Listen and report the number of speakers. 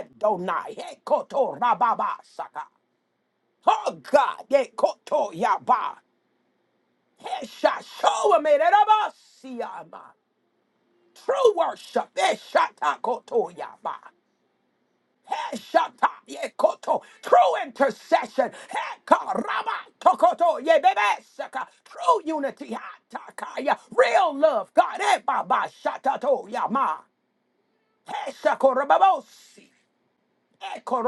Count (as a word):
one